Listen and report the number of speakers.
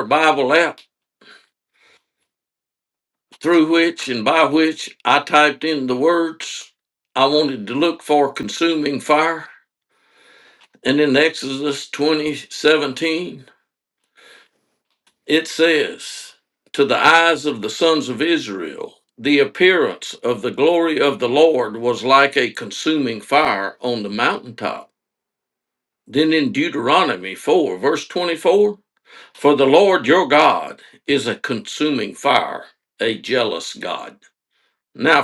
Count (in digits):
1